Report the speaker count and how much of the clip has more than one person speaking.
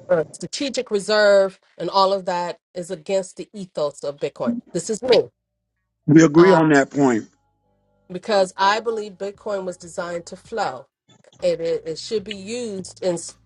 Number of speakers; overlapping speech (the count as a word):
two, about 2%